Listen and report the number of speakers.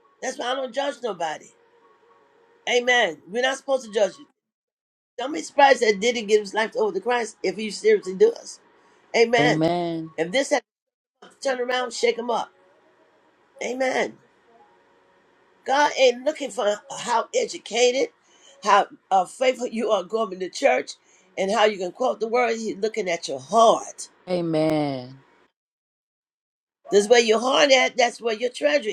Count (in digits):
2